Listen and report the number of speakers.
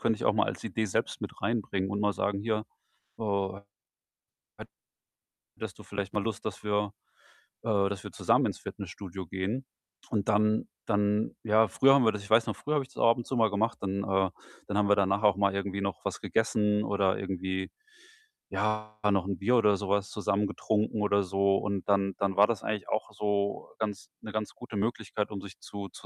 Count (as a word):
one